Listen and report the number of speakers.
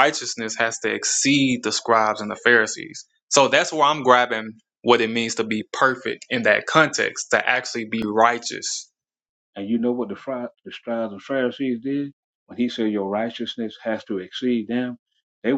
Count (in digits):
2